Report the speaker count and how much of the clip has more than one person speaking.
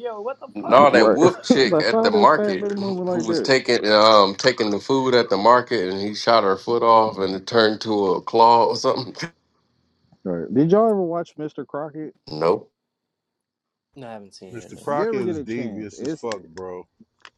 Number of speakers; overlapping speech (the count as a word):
four, about 23%